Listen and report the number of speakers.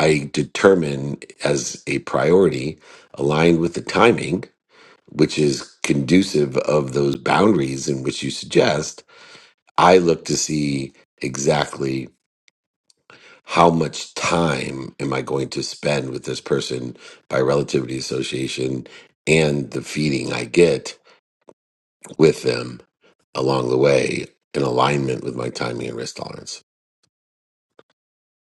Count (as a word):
one